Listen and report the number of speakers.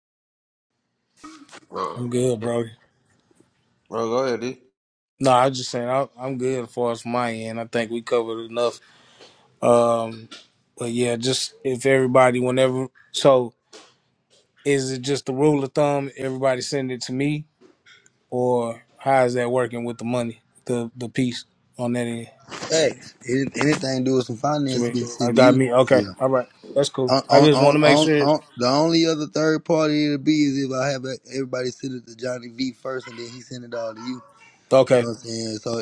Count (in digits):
3